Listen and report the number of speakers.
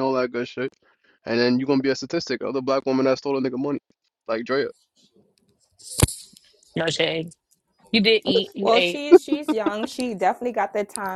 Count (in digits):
3